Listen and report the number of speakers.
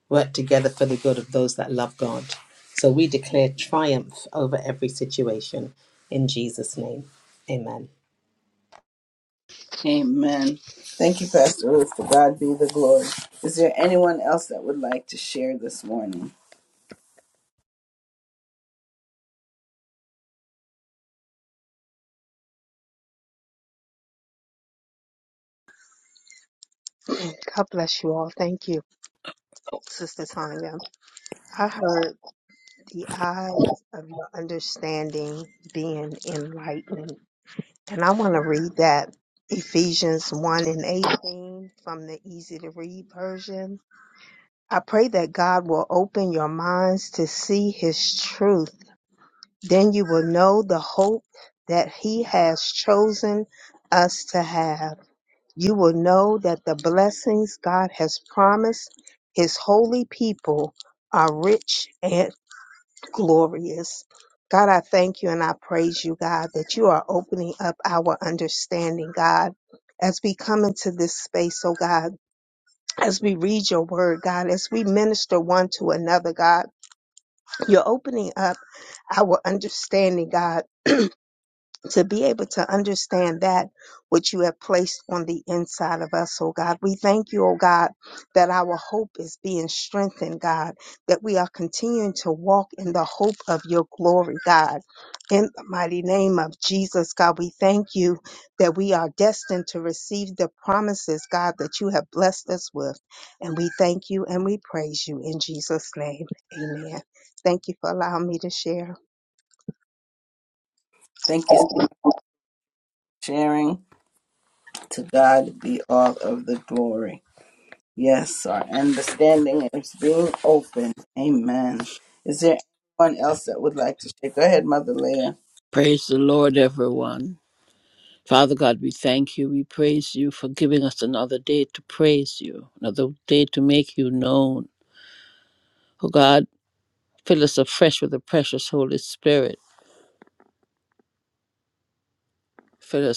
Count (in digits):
4